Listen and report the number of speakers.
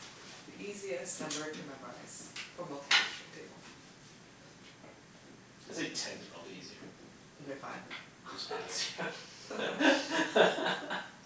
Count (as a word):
two